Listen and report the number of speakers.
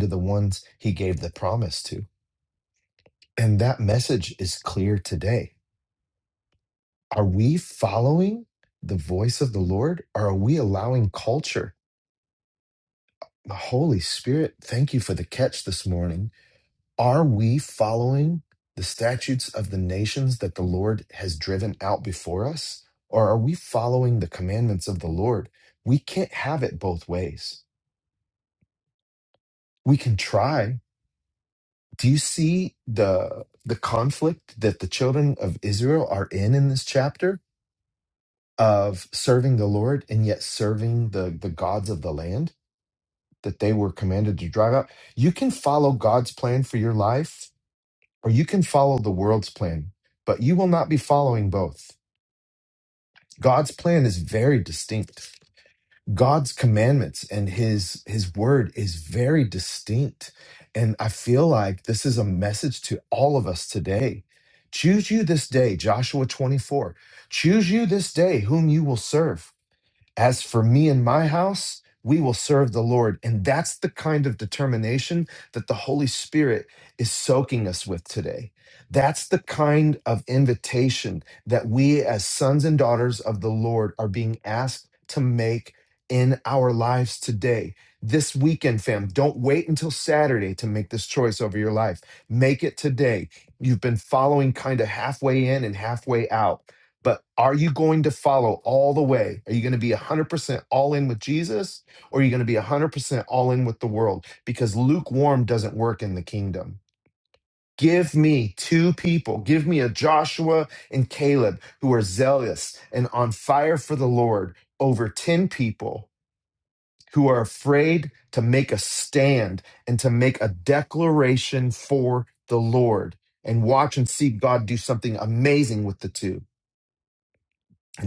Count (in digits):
1